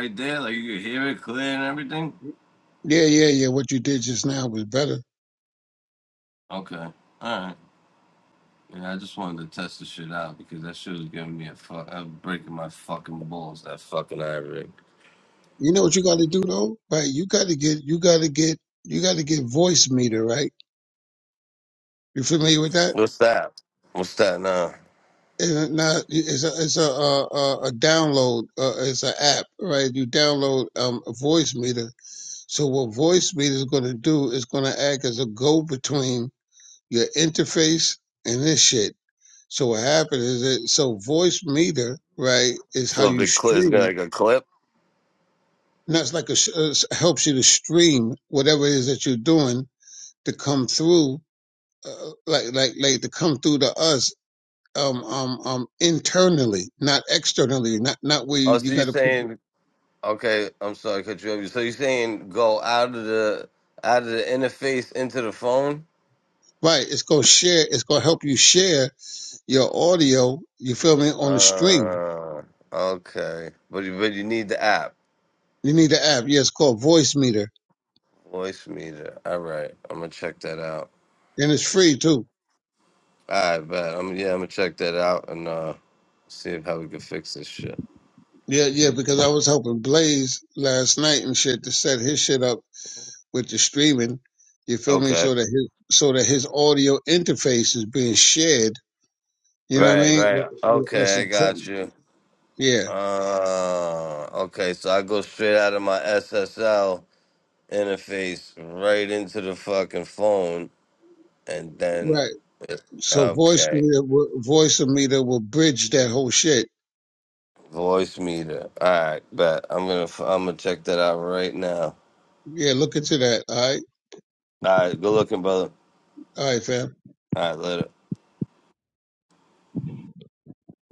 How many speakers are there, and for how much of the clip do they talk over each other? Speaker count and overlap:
2, about 4%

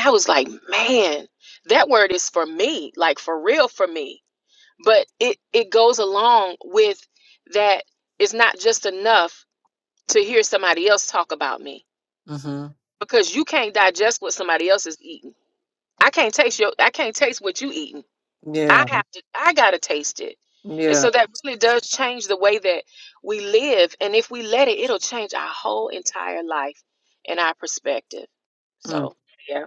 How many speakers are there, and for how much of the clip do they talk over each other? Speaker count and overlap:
2, about 2%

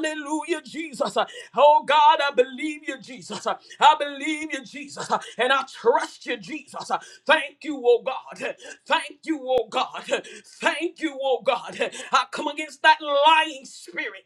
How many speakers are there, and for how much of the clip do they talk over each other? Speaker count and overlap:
1, no overlap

